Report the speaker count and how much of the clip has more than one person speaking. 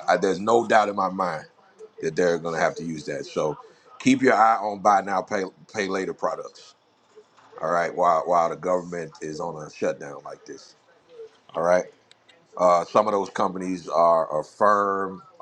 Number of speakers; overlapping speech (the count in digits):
1, no overlap